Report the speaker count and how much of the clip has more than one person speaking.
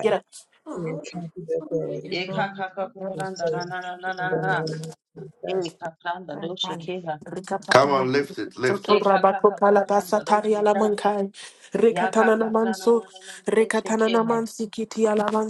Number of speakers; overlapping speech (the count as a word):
four, about 38%